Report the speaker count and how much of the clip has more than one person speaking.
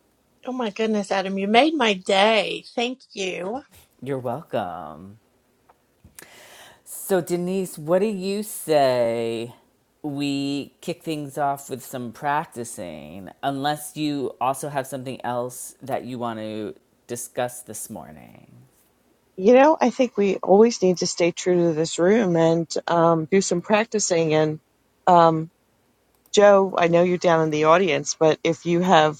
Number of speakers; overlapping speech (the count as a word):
three, no overlap